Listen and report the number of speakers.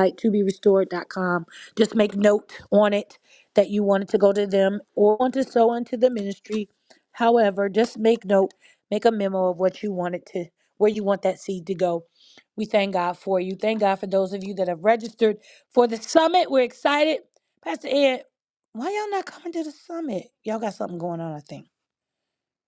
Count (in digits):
1